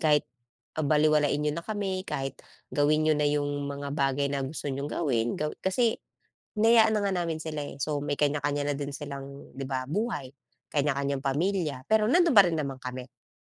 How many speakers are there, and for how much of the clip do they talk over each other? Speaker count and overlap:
1, no overlap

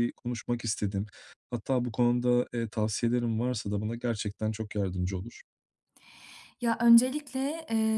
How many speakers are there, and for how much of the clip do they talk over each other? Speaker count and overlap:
2, no overlap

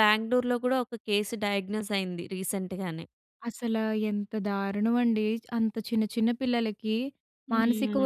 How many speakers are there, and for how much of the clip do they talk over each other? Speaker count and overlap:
2, about 7%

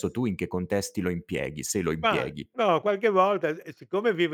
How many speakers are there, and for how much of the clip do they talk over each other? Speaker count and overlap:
2, about 9%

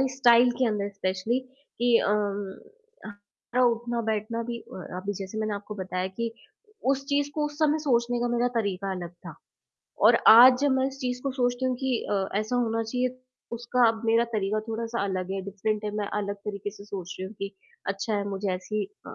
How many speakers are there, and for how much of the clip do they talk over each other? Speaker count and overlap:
1, no overlap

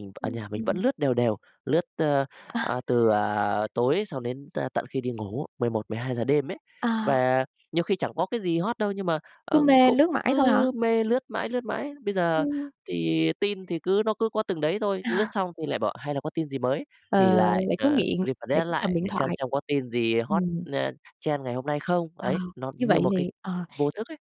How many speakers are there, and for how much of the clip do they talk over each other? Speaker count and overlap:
2, about 19%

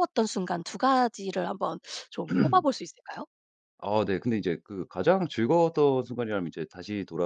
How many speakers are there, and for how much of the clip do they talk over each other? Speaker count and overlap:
2, no overlap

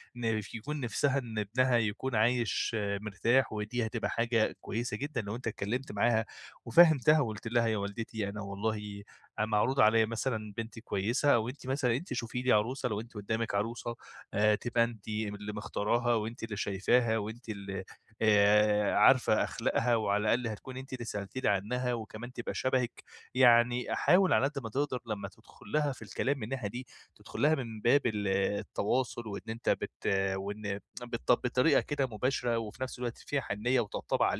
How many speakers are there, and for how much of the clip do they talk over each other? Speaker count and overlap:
1, no overlap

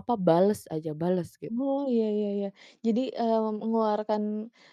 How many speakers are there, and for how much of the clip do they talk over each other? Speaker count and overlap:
2, no overlap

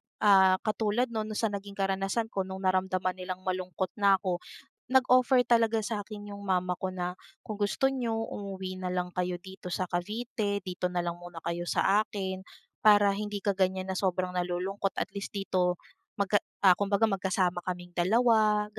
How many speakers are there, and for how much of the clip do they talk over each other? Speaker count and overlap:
1, no overlap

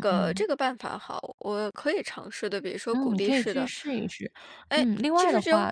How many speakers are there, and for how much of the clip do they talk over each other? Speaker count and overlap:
2, about 38%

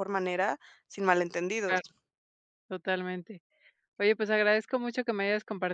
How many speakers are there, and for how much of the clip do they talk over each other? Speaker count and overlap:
2, about 2%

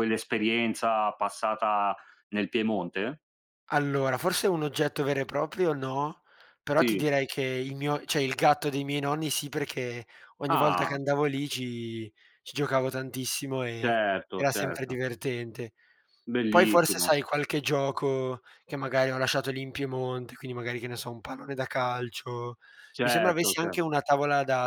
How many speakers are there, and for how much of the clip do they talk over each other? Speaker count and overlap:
2, about 11%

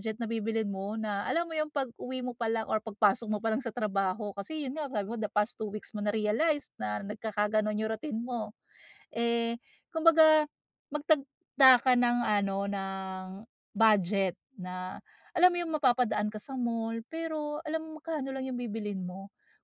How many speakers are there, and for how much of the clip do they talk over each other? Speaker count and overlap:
1, no overlap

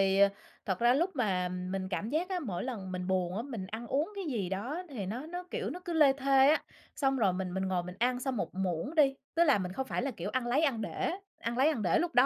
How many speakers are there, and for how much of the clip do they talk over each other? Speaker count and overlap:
1, no overlap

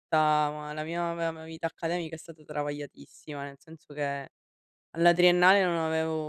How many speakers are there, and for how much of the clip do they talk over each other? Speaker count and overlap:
1, no overlap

